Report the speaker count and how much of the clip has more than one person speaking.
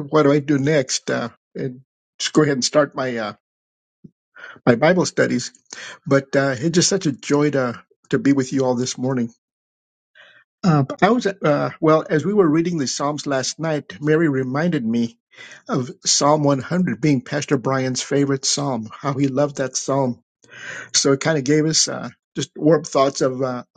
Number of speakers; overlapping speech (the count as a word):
one, no overlap